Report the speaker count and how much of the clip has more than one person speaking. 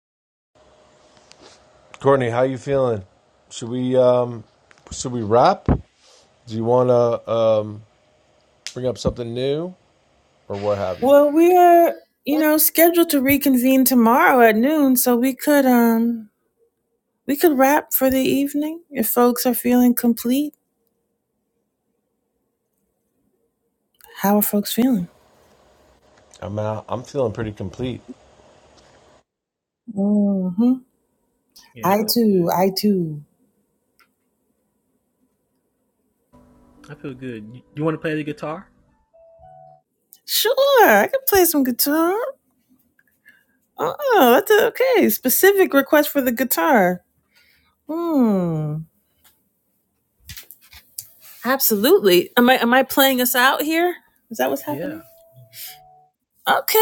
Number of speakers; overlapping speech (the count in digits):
3, about 2%